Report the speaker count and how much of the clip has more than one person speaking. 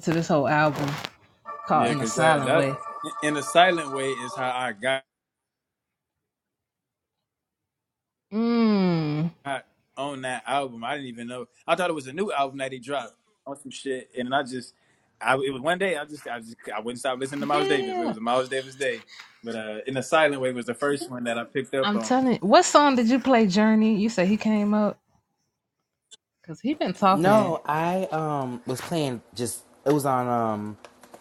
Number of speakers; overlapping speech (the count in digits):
3, about 8%